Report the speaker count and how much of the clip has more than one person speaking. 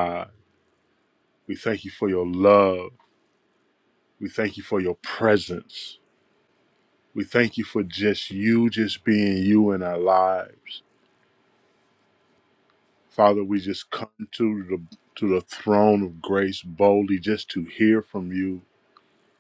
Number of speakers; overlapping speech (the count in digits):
1, no overlap